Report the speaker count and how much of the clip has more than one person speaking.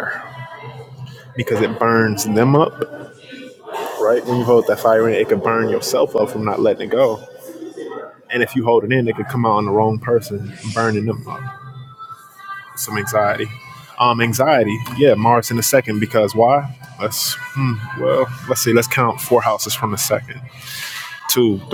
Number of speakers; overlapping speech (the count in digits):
1, no overlap